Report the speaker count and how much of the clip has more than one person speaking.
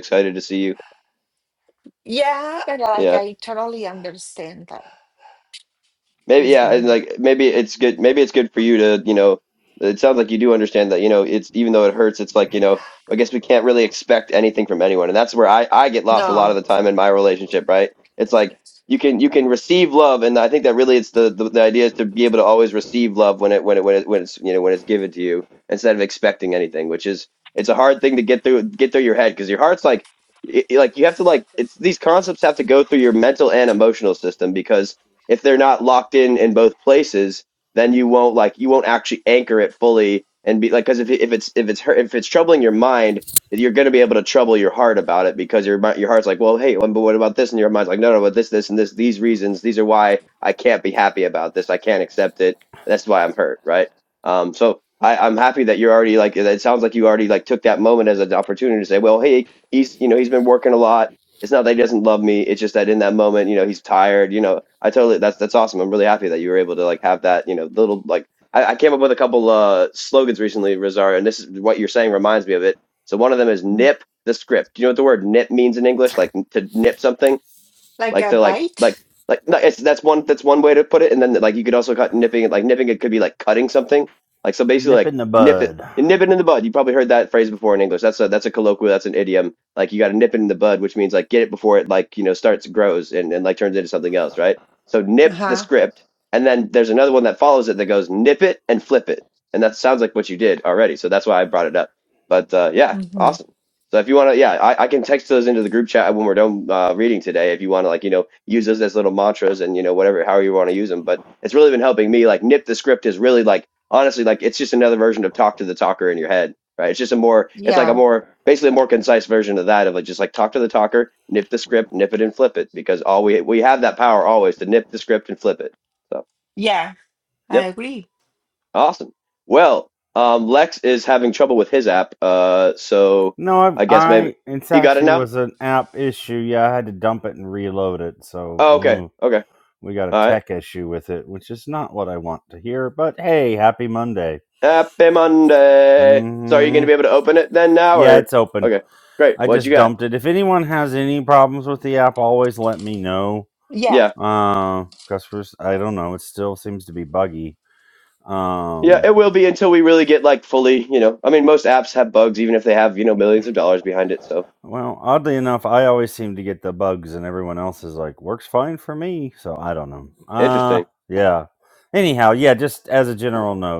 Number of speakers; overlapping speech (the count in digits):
3, about 5%